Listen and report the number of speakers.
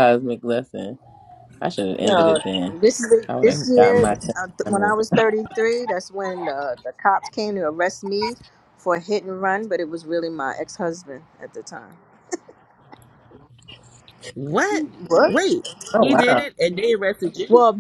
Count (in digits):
3